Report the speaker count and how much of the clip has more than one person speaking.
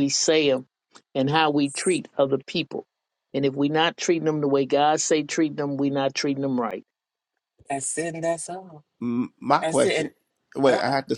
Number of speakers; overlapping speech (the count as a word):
three, about 7%